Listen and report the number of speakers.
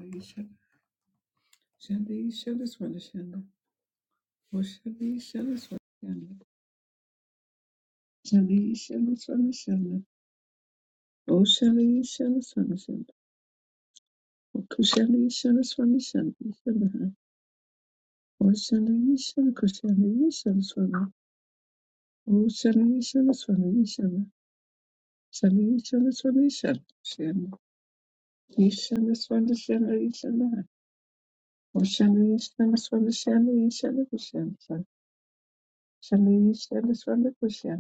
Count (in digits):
1